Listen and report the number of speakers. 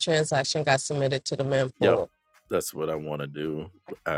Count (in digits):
2